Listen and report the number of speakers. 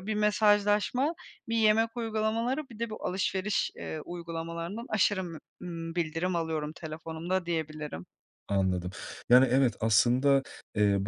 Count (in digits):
2